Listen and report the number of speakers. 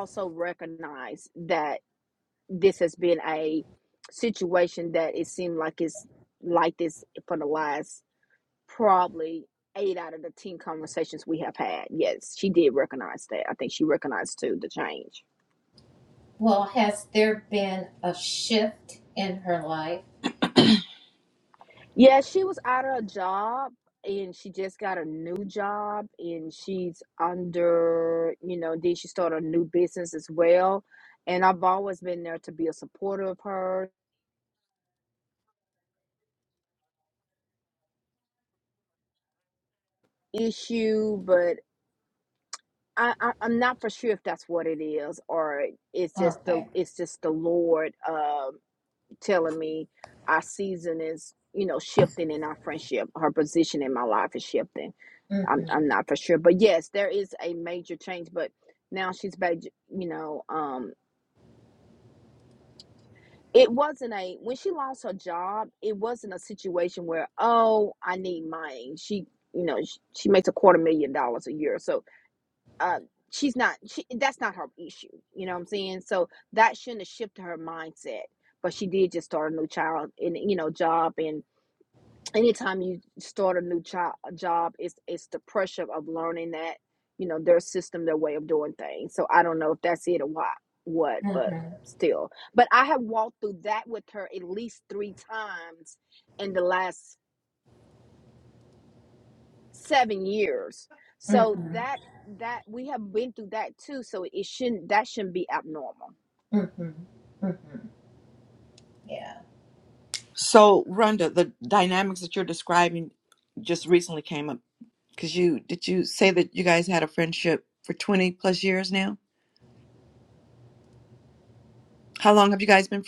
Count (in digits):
3